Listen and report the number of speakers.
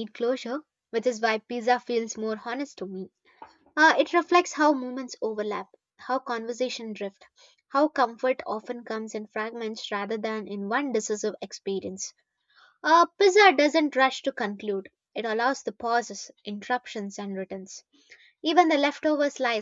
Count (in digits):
1